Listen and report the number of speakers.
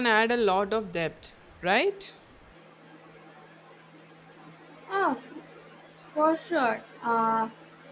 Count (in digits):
2